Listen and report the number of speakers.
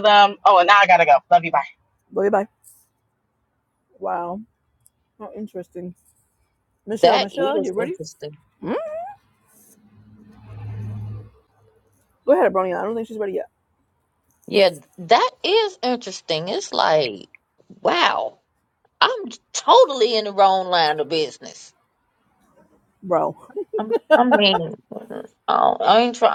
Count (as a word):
three